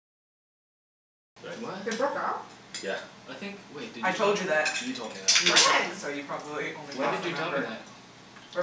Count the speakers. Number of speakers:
three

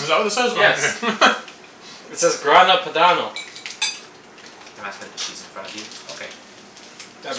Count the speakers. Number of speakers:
three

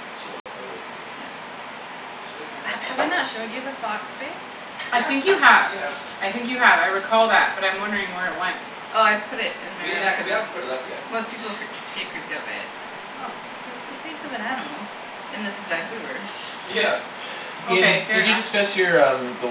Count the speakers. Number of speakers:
four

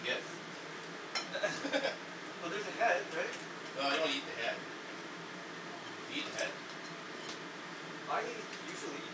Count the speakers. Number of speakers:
two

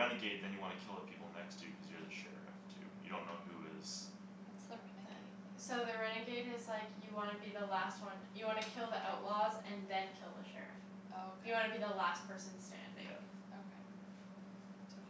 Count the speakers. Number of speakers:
three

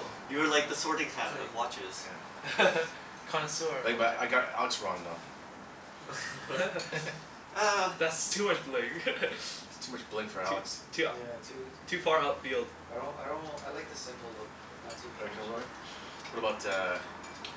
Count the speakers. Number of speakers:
four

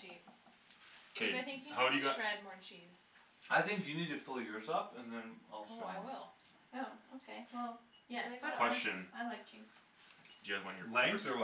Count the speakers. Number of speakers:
four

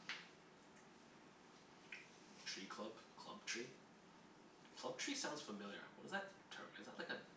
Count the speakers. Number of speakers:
one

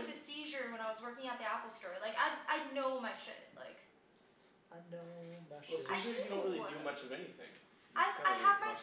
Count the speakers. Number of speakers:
three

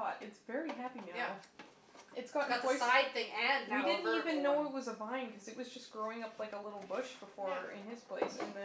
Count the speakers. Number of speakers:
two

